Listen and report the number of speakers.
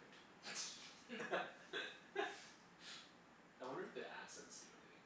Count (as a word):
one